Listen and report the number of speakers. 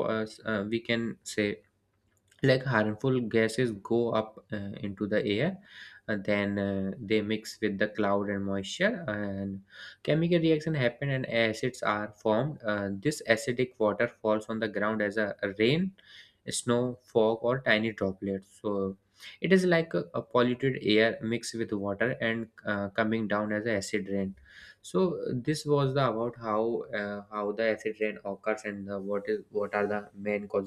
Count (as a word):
one